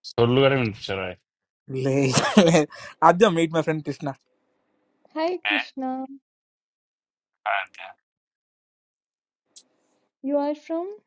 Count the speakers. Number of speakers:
three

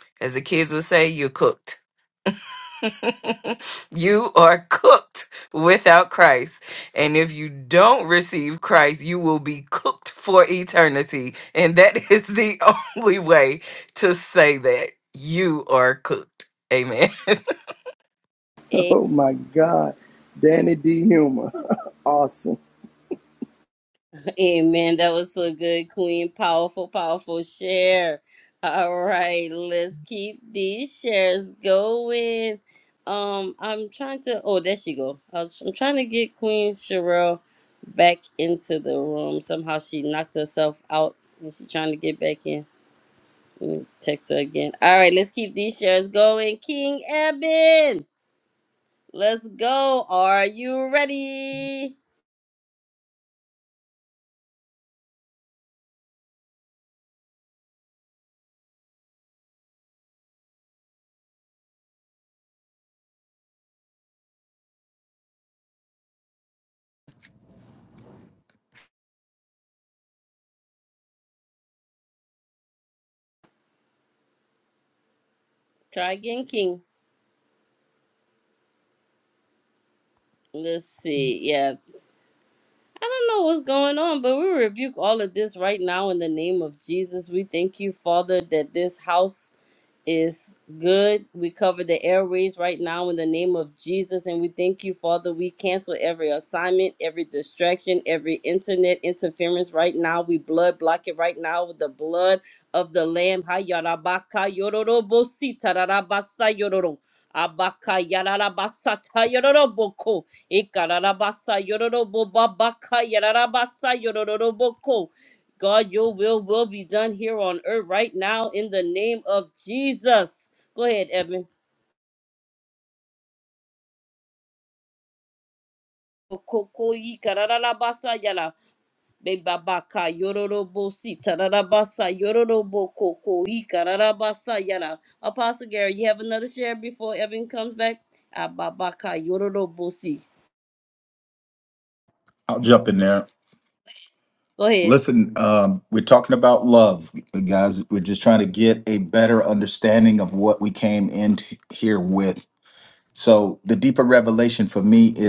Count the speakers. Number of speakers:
four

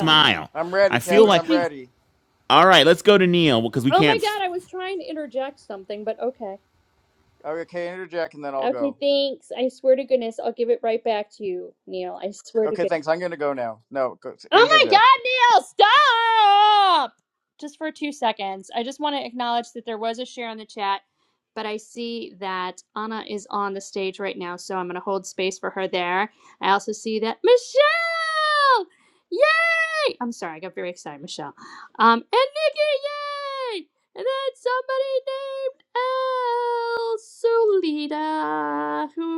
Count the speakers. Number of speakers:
three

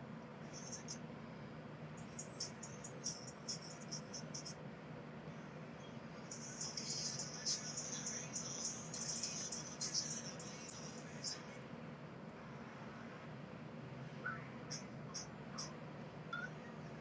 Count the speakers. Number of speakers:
zero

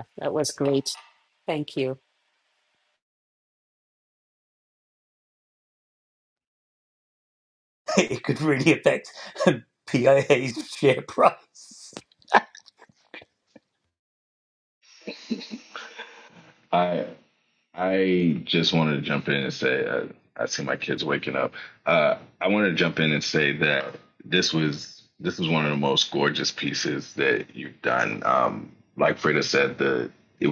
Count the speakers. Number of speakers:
three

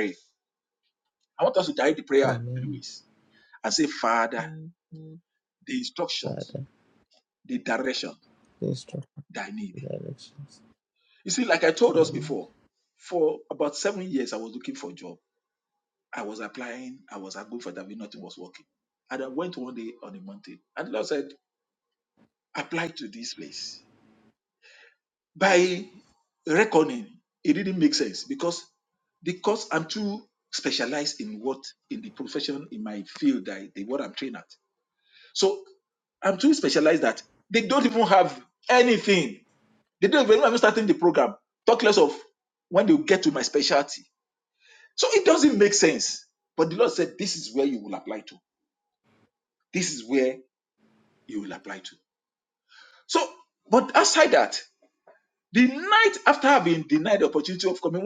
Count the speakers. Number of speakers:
two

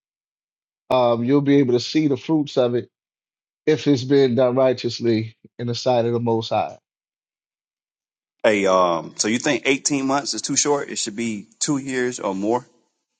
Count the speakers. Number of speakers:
two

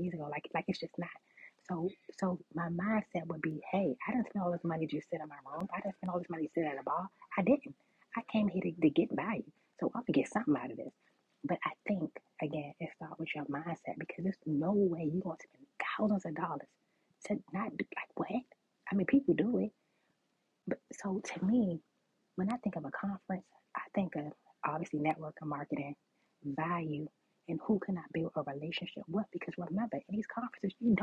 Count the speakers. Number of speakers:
one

